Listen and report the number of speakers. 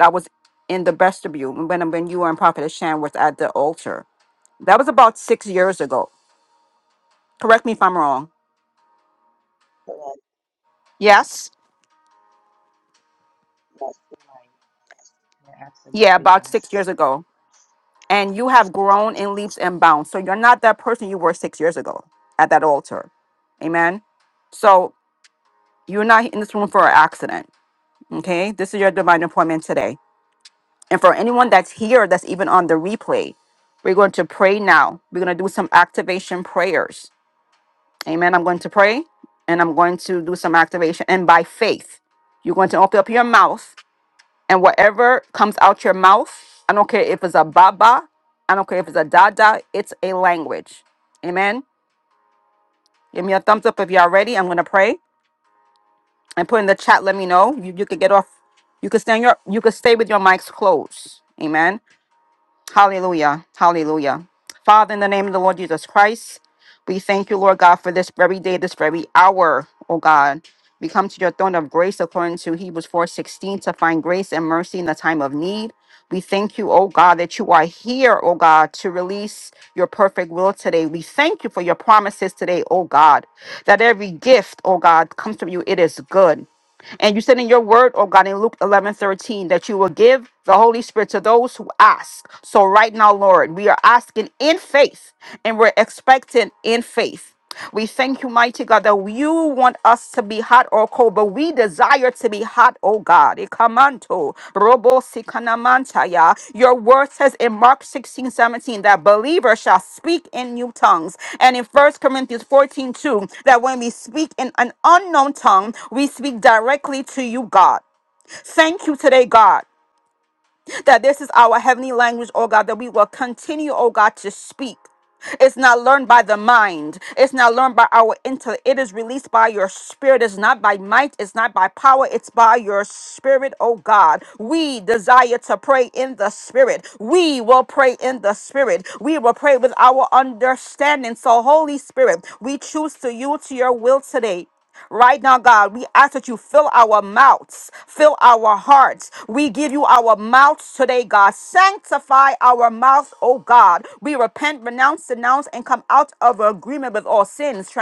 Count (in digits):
2